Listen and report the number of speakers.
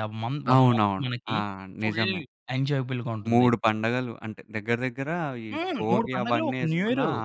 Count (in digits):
2